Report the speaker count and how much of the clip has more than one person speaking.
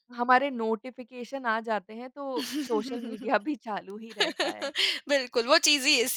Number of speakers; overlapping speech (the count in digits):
2, no overlap